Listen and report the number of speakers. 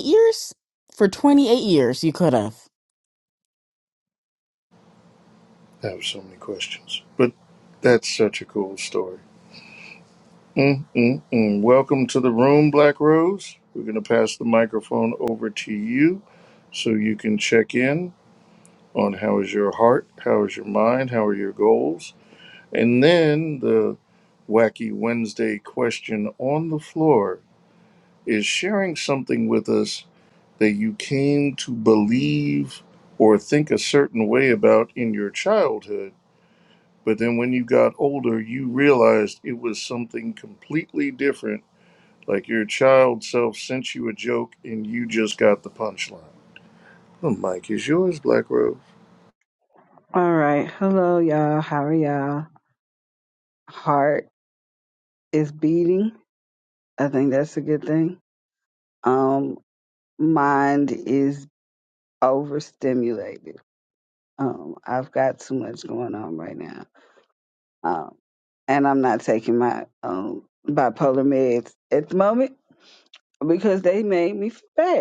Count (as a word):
three